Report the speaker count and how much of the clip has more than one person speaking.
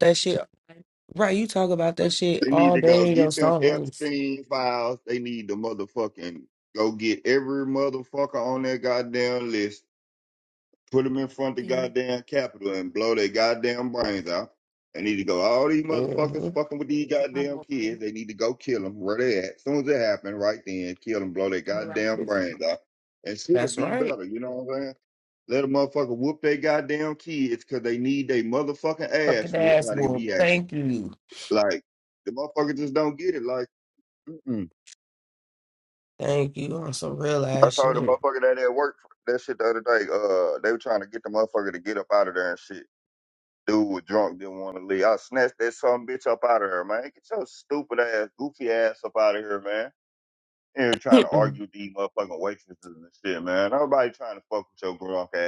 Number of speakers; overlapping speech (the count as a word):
two, about 10%